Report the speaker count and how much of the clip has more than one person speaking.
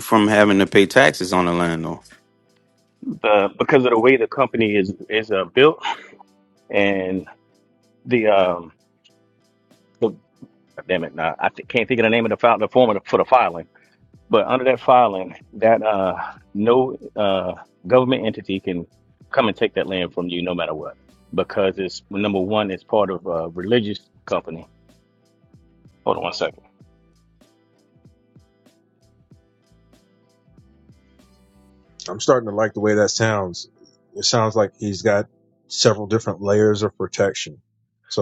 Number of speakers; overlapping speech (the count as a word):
three, no overlap